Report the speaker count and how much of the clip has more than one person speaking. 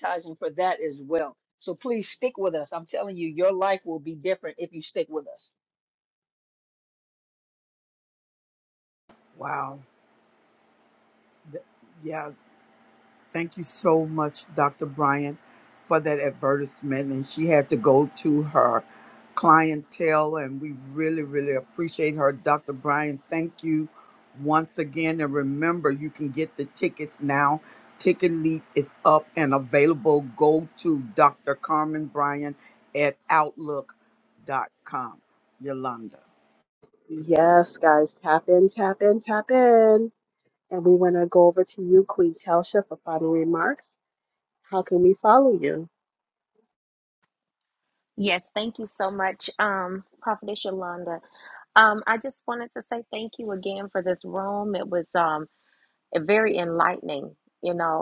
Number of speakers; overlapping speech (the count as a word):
four, no overlap